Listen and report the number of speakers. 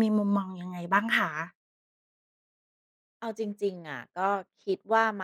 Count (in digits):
2